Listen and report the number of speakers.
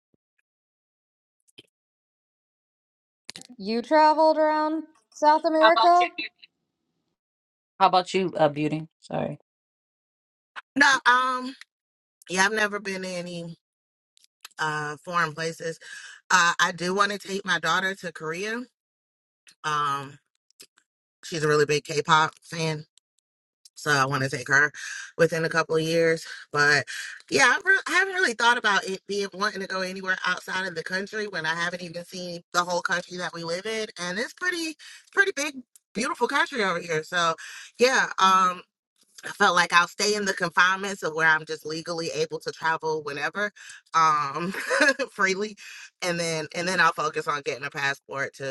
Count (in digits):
3